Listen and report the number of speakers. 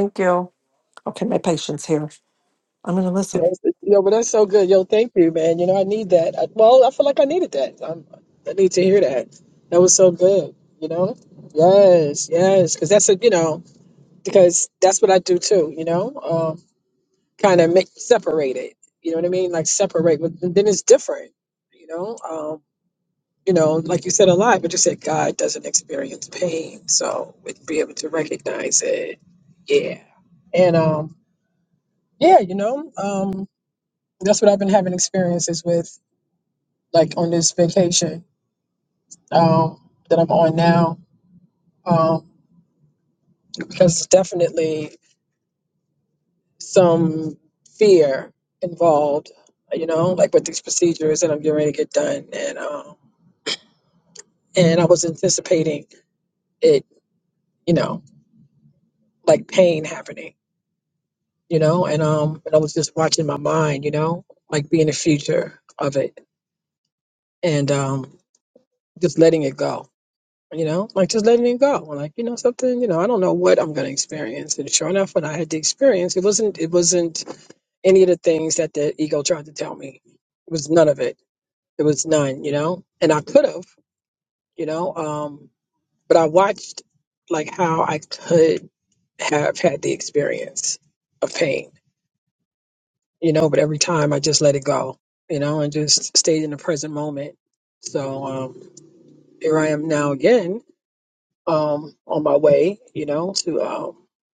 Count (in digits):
2